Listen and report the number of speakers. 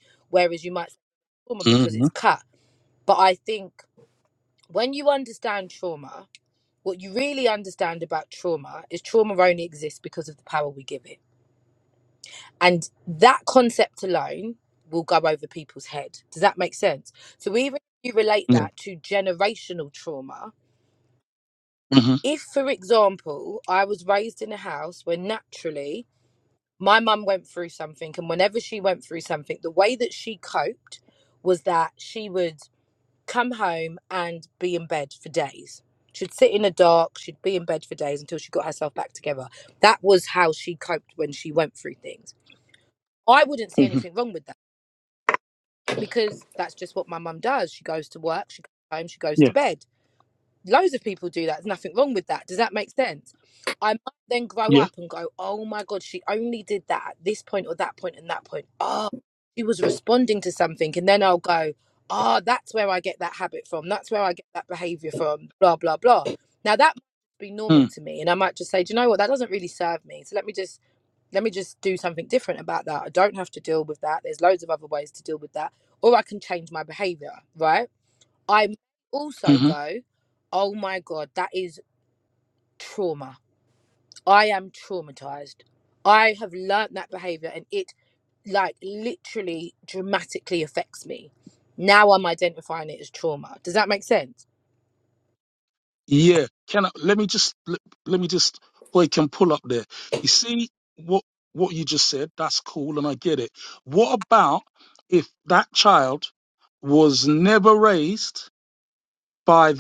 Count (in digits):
2